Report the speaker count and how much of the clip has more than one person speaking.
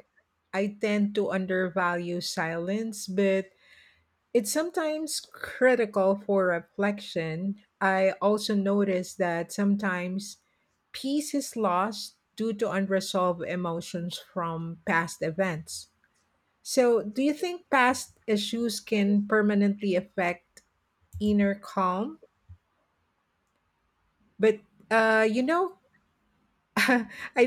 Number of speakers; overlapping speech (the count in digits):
1, no overlap